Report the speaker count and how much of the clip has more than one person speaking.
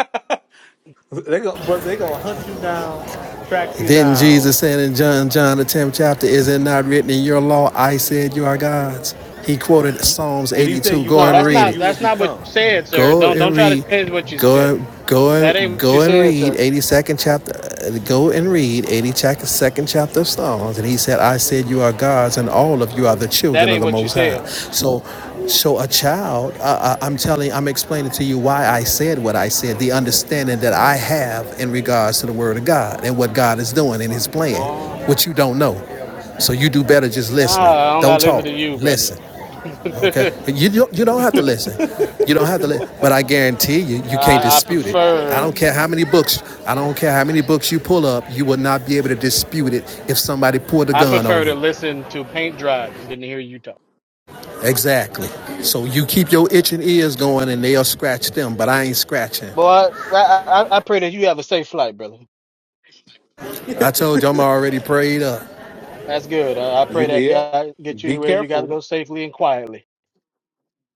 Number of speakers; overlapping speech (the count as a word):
three, about 16%